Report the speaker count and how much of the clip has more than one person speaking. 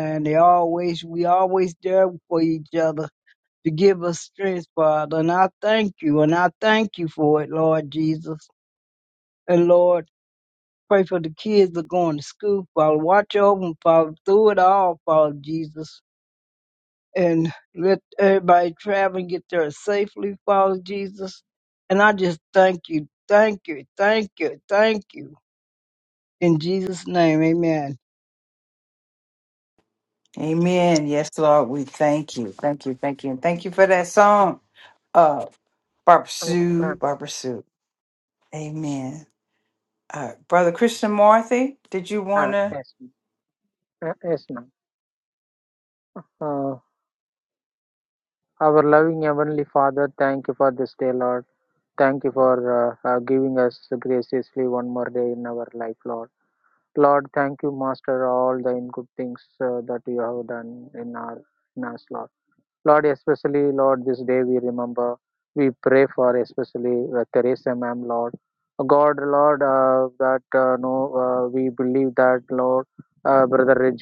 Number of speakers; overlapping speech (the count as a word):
three, about 1%